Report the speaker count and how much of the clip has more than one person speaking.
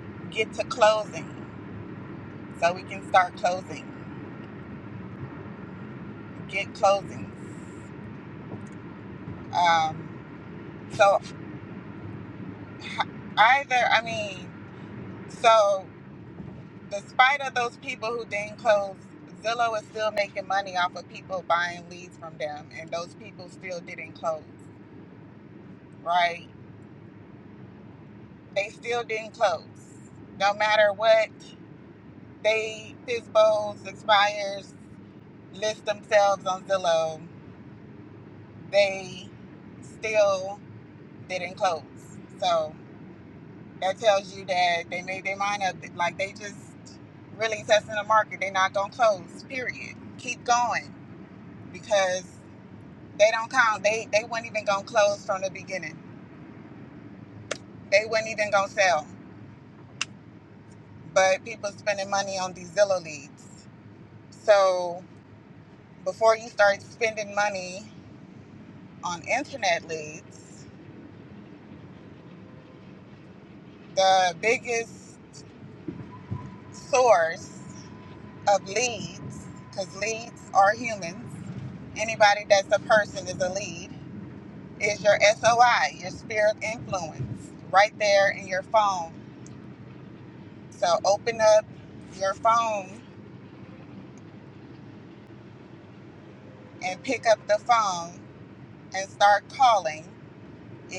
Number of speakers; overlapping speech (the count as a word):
one, no overlap